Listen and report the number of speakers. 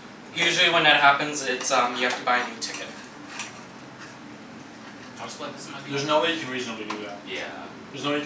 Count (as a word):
three